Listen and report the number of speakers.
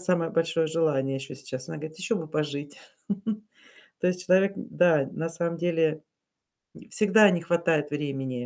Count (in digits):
1